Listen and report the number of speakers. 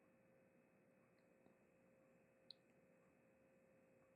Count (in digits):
0